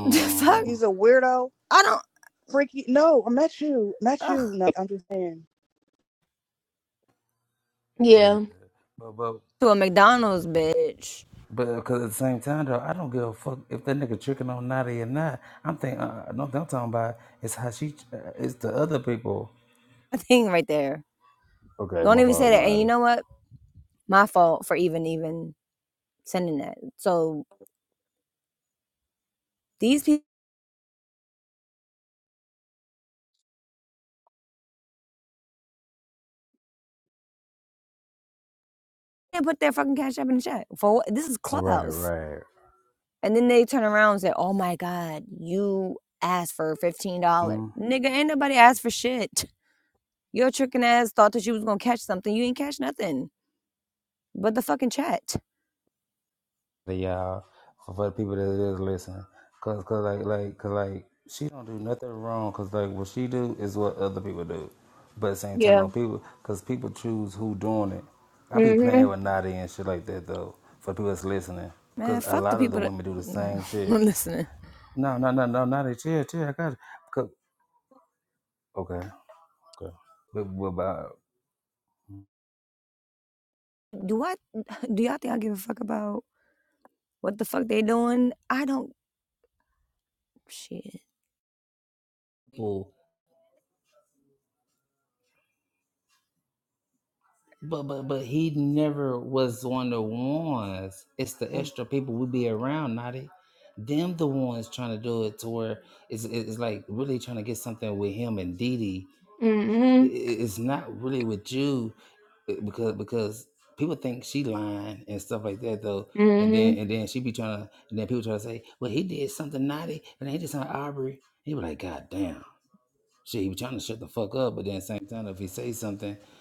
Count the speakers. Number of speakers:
four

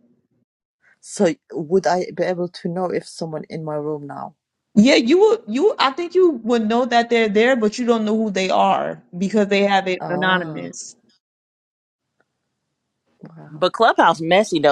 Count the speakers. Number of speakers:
three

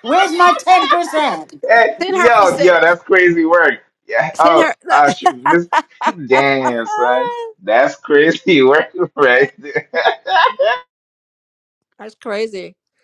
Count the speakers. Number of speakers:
three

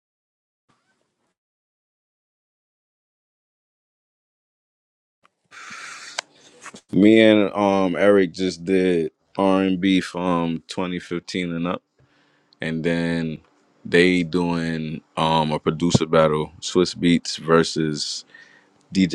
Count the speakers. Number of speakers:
one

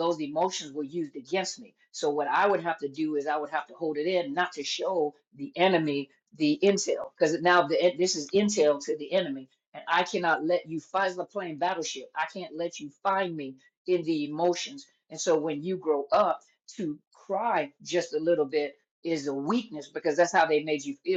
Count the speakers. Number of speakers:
one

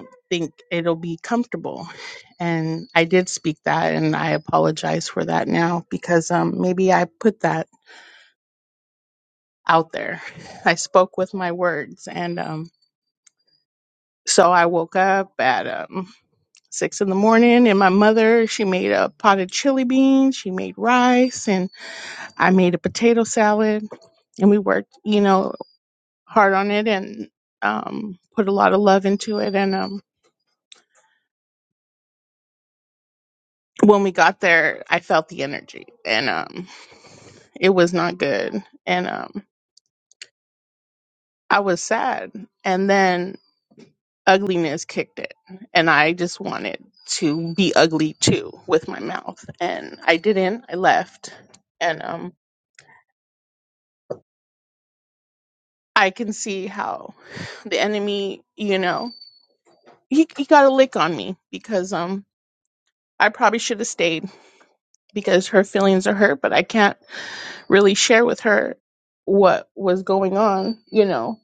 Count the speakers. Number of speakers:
one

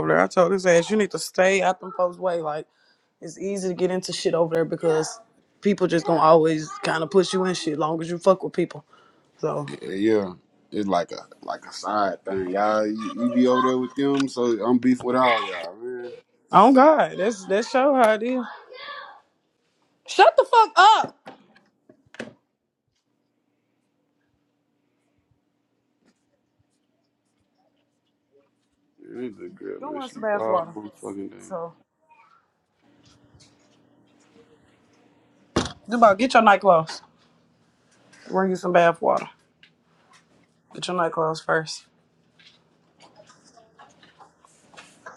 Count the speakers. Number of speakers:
two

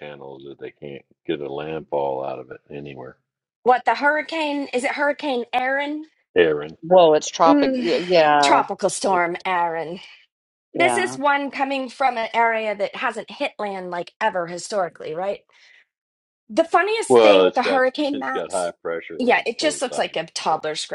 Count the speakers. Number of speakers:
three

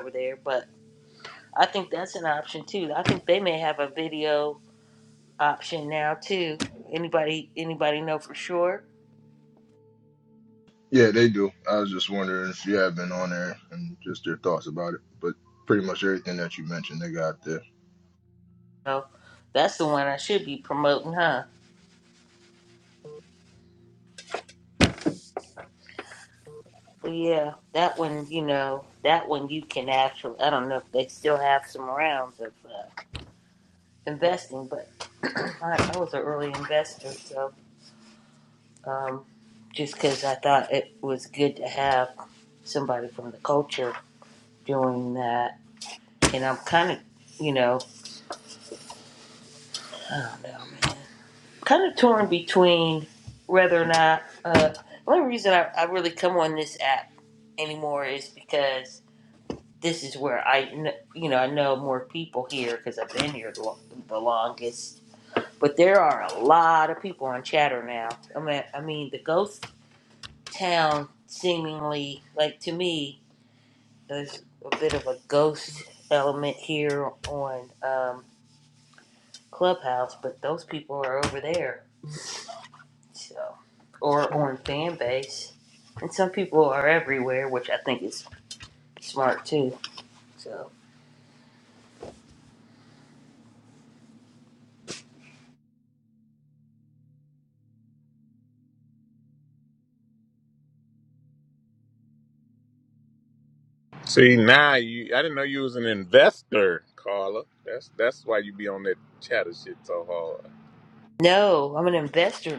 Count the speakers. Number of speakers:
three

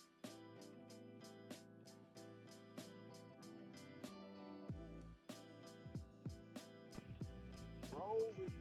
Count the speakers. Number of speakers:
zero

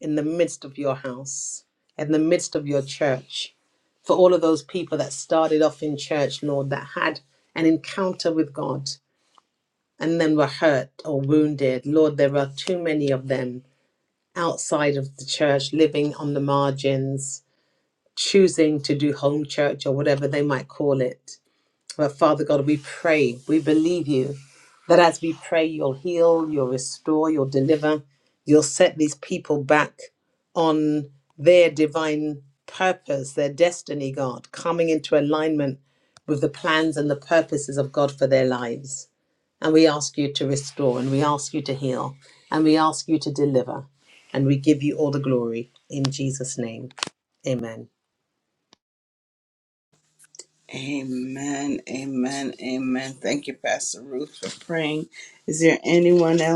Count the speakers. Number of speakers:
two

